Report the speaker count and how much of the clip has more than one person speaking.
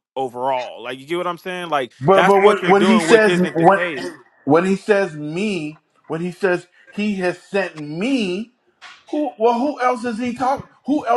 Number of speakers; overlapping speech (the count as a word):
two, about 16%